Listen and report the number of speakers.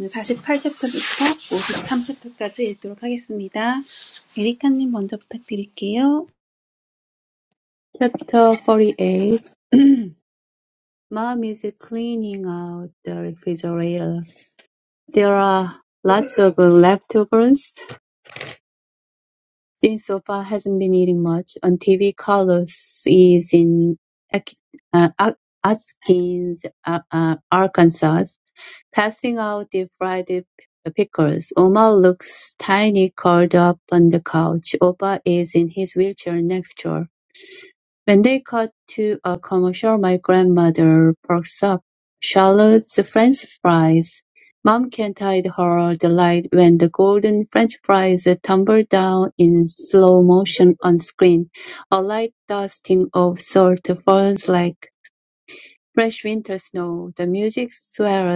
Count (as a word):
two